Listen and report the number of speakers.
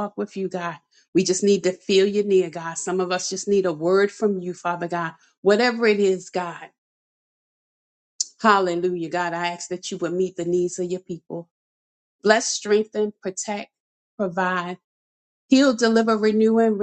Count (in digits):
1